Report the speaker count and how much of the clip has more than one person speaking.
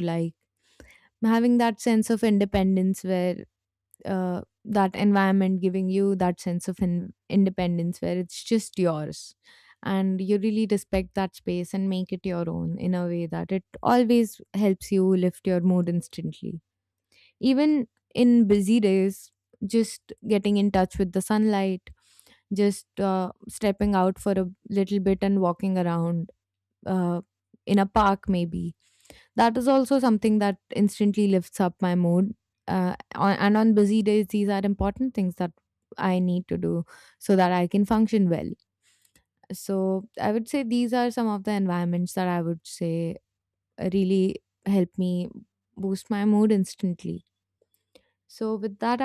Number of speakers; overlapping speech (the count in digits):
1, no overlap